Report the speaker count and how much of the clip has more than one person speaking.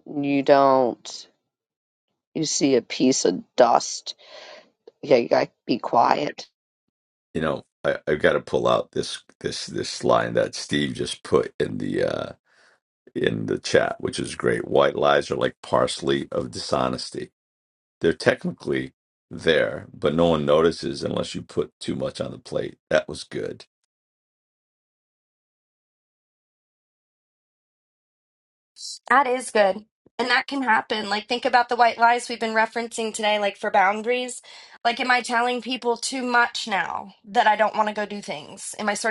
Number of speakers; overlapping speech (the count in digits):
3, no overlap